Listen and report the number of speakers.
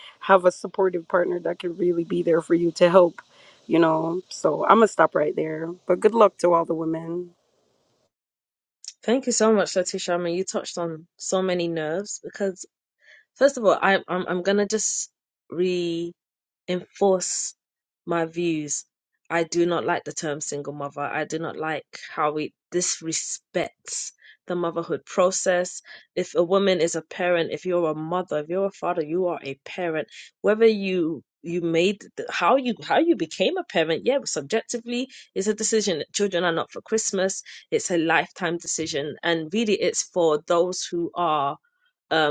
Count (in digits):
2